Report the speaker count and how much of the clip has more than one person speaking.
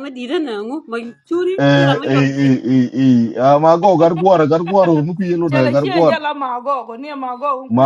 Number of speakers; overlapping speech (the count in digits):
3, about 23%